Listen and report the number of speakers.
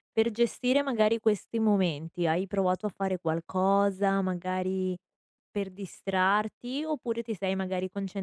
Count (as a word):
one